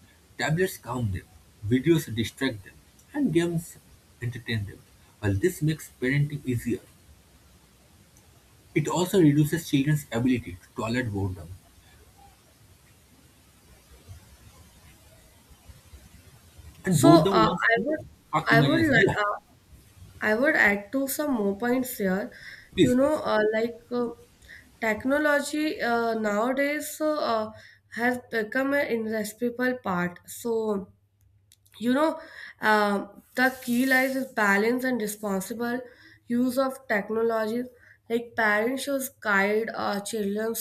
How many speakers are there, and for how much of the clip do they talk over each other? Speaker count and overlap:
2, about 5%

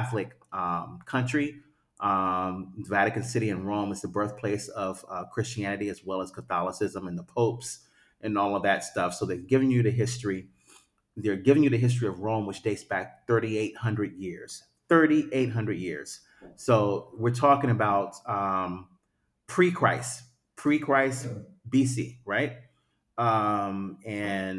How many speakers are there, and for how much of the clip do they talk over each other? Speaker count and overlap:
1, no overlap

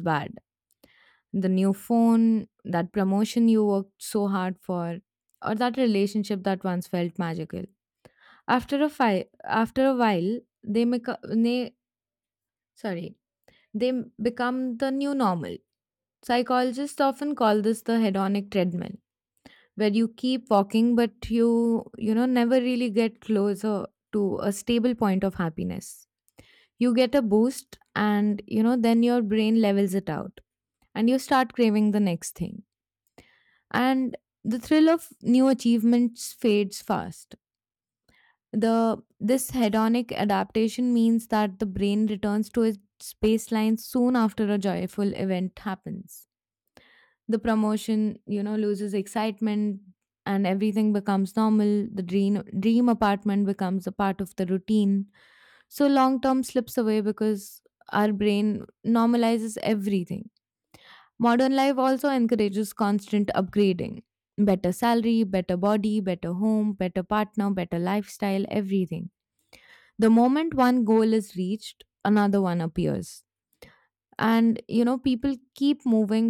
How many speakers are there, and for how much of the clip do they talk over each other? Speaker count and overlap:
1, no overlap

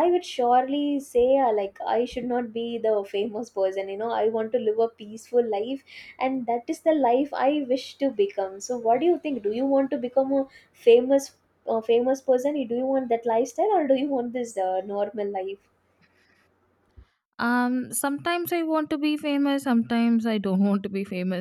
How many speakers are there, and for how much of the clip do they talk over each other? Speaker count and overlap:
2, no overlap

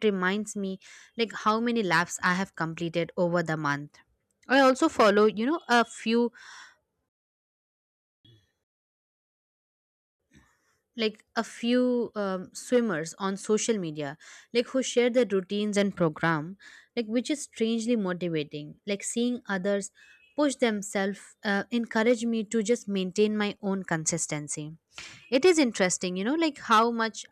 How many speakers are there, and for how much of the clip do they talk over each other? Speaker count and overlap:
1, no overlap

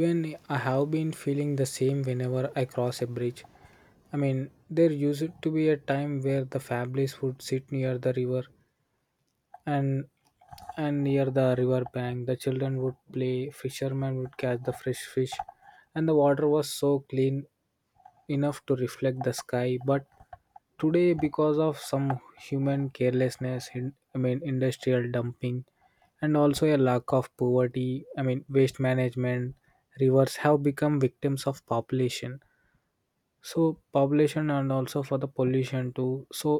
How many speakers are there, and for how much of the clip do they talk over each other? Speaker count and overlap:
1, no overlap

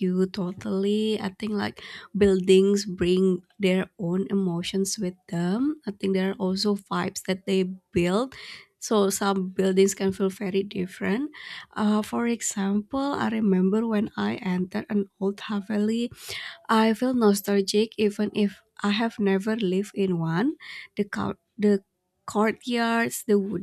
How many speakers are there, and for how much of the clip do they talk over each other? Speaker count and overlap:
1, no overlap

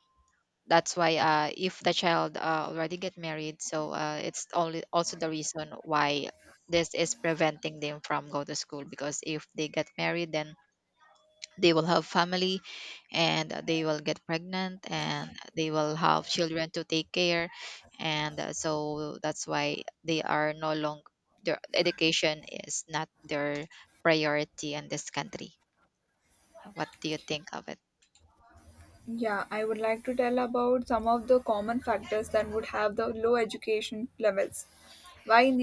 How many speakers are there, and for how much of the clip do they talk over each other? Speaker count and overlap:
2, no overlap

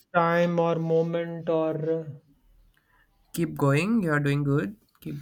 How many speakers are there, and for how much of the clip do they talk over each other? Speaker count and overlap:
2, no overlap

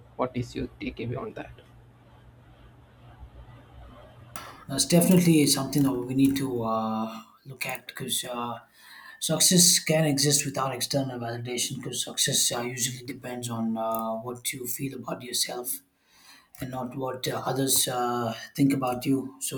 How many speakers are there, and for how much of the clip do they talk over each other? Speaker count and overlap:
2, no overlap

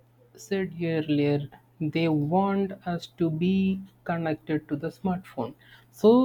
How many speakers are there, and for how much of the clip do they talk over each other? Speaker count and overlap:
1, no overlap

